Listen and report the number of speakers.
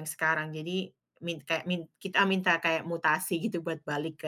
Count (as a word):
one